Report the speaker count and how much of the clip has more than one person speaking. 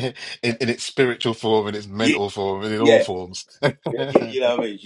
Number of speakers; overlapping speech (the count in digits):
2, about 10%